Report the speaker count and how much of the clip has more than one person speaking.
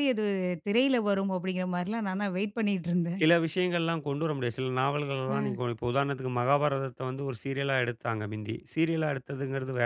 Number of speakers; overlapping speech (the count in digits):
2, about 3%